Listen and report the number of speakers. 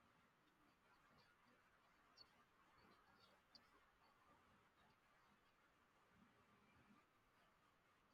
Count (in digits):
0